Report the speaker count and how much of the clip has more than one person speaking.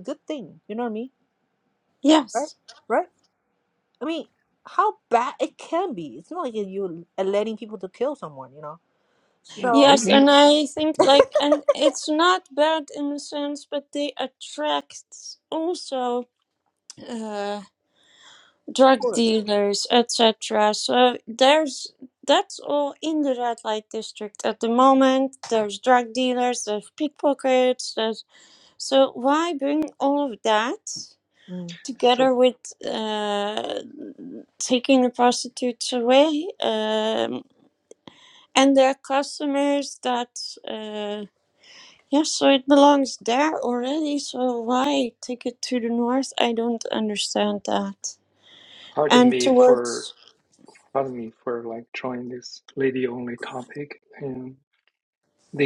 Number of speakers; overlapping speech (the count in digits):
3, about 4%